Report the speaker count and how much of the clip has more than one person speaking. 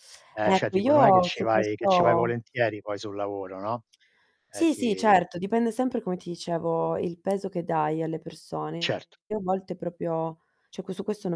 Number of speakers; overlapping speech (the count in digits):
2, about 22%